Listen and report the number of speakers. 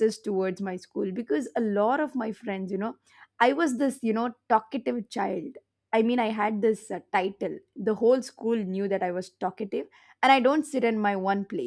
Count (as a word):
one